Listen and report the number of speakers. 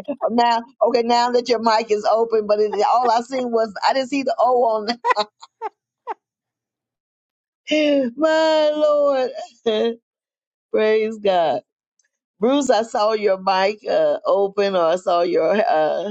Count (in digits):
1